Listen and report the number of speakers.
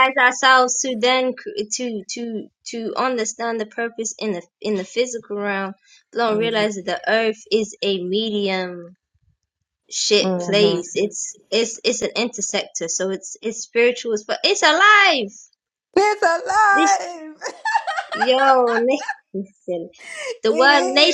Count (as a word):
two